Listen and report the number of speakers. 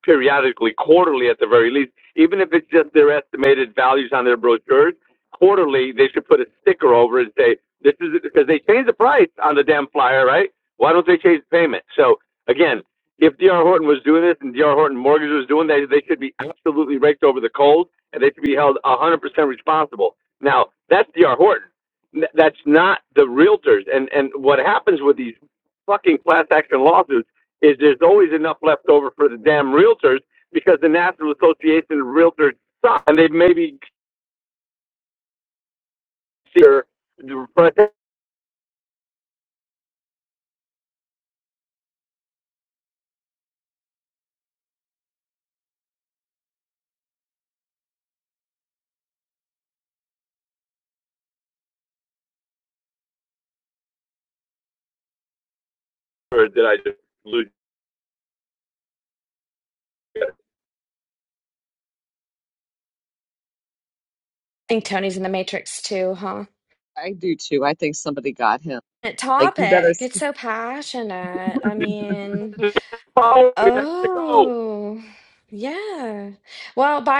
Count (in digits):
3